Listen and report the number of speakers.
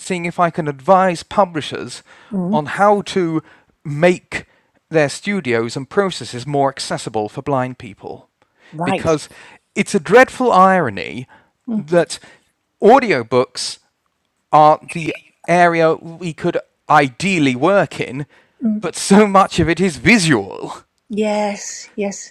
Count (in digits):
2